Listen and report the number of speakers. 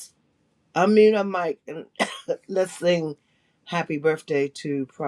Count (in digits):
1